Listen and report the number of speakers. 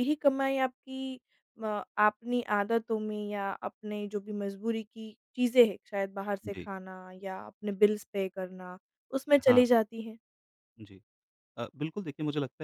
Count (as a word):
two